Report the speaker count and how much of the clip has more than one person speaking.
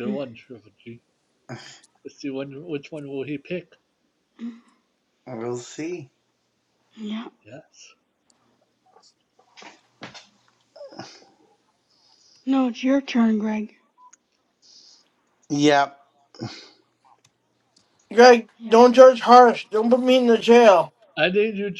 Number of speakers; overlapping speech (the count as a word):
four, about 1%